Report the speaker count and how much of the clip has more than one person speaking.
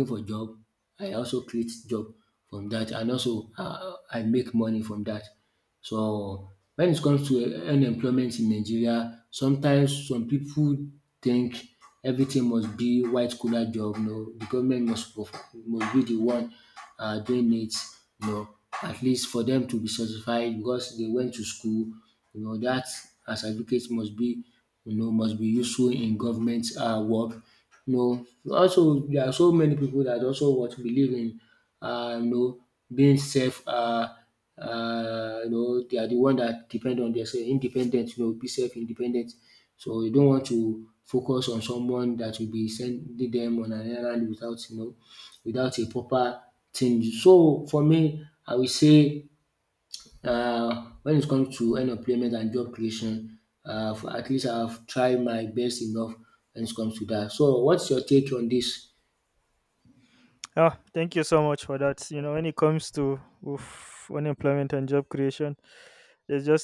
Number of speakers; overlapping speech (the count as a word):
two, no overlap